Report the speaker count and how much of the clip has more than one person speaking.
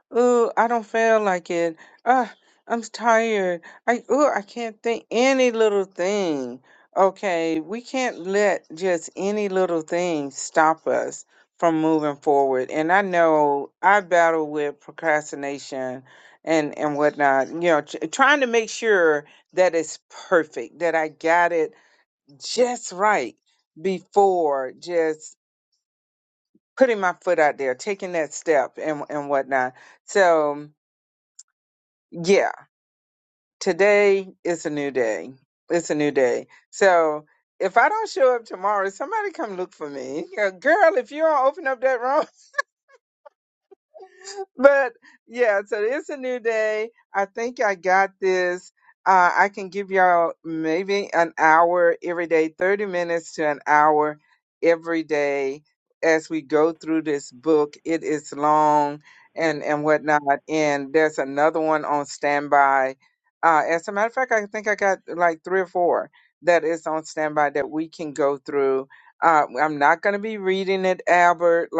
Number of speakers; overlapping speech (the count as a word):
one, no overlap